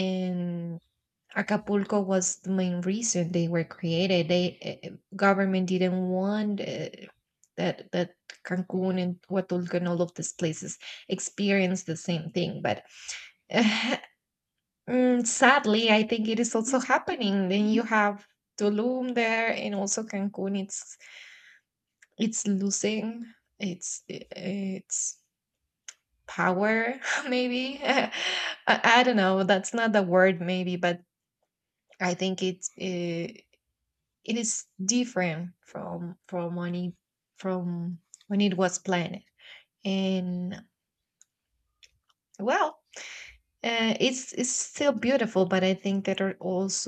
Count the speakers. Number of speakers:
one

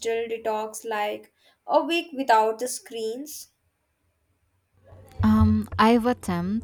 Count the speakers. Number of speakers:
two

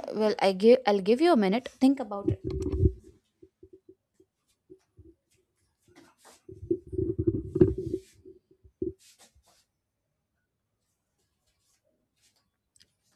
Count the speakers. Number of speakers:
one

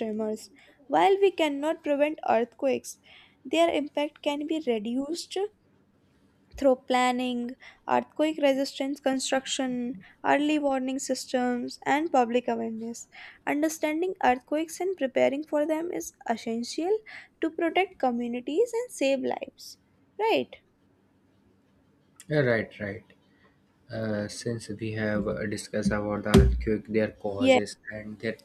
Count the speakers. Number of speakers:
two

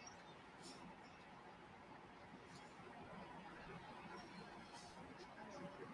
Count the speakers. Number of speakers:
zero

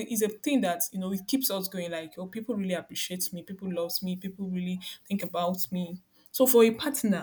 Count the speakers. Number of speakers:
one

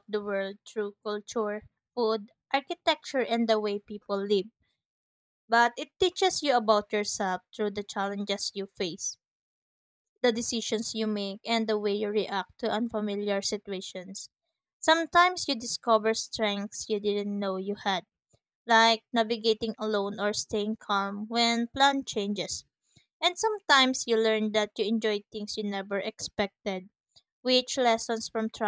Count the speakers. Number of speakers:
one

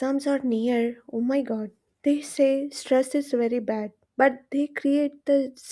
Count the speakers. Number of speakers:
one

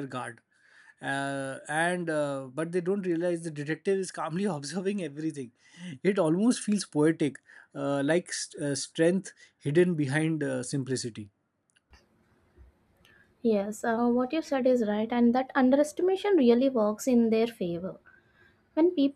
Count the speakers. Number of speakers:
two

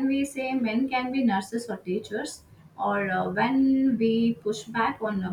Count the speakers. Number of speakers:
one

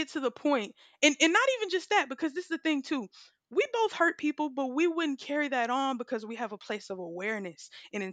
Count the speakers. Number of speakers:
one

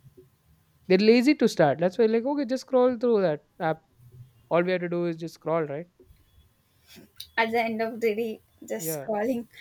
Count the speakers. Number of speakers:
two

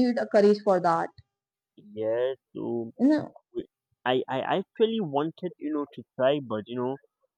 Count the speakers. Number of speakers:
two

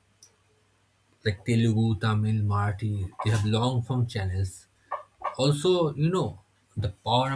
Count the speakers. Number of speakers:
one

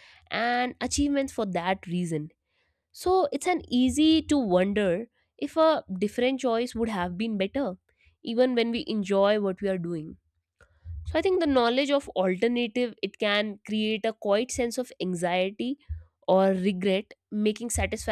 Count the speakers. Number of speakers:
one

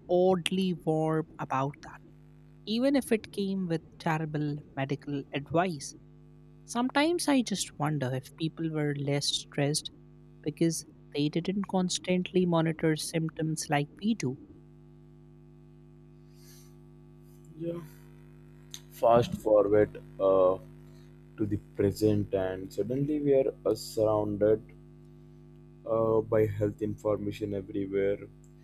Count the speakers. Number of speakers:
two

